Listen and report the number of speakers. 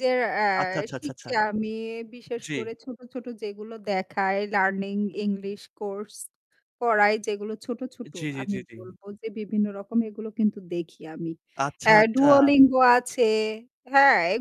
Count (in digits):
2